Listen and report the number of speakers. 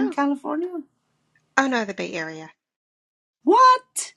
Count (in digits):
2